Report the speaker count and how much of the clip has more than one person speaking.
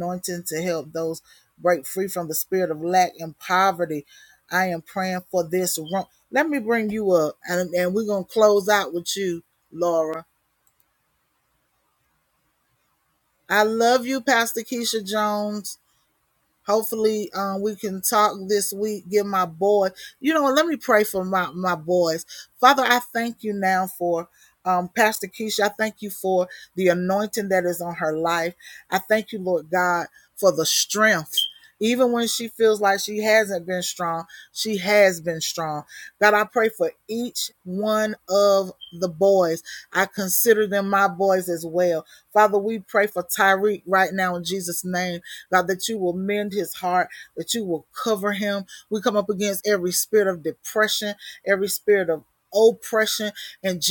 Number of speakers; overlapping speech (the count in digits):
1, no overlap